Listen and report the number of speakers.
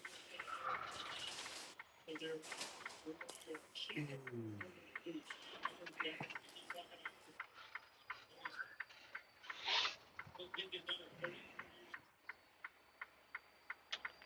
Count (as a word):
zero